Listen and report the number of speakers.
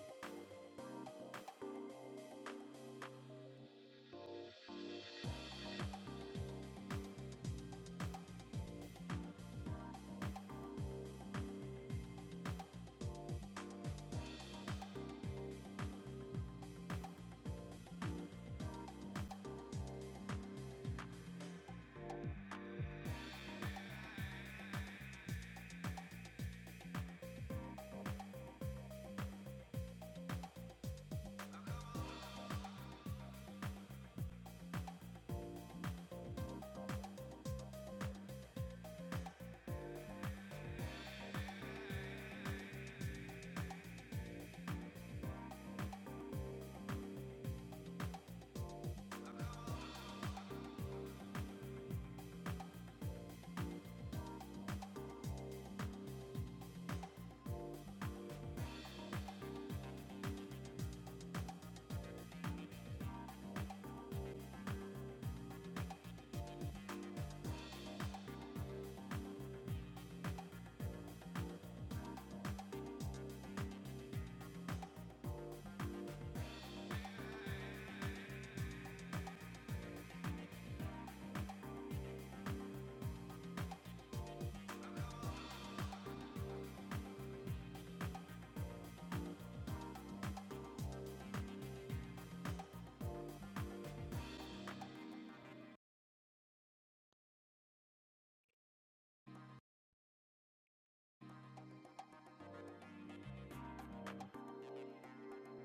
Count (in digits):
0